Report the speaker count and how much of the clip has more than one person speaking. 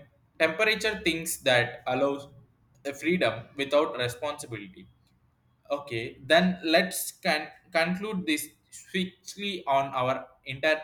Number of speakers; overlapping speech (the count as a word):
one, no overlap